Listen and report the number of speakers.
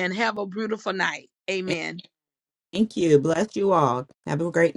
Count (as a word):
two